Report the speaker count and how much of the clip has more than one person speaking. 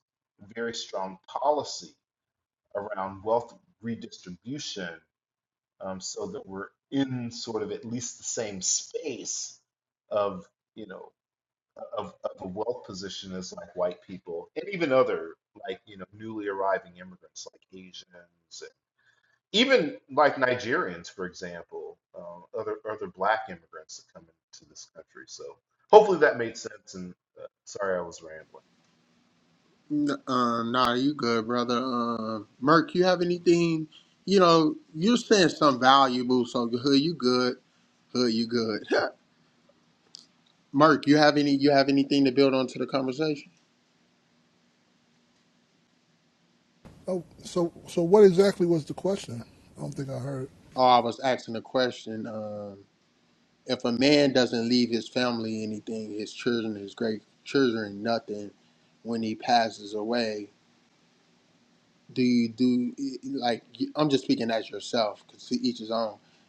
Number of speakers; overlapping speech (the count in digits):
3, no overlap